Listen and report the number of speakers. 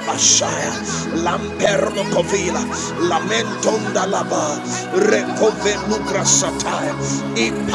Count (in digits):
1